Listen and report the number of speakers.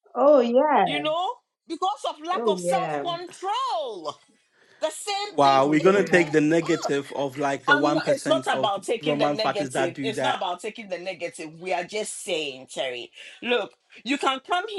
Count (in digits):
3